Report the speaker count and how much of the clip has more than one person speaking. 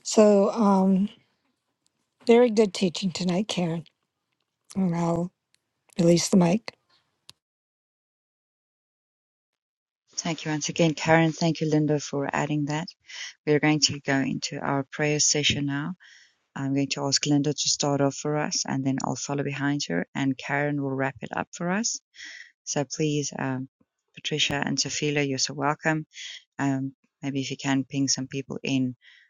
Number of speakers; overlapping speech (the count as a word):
two, no overlap